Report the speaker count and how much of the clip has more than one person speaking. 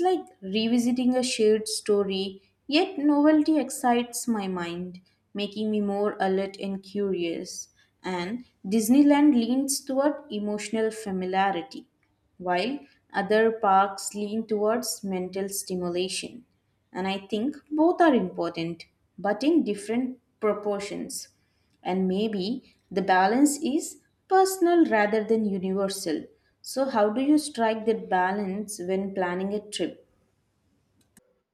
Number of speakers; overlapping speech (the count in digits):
1, no overlap